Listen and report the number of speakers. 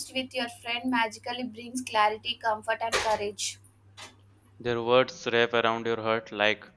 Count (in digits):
2